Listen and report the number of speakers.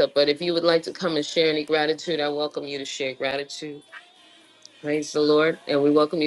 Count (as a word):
one